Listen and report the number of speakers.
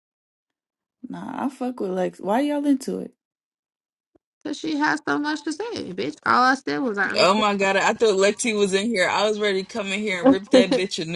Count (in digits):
3